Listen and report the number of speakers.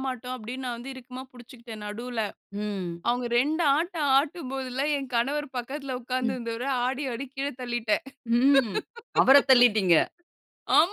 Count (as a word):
two